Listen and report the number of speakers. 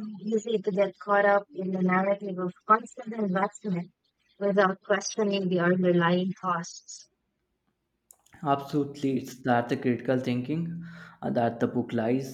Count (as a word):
two